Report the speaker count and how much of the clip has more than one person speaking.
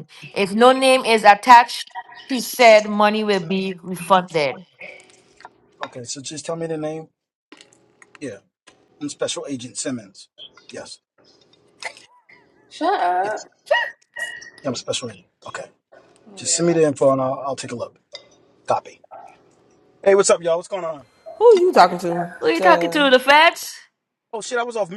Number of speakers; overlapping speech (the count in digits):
4, about 4%